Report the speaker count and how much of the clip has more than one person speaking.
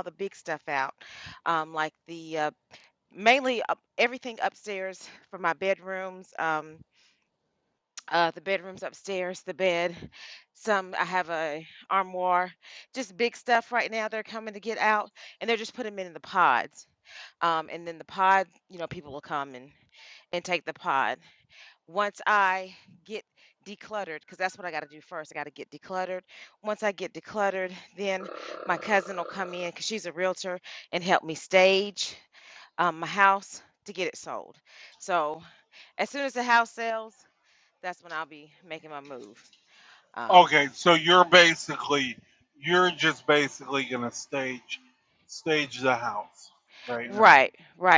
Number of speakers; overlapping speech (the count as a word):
two, about 1%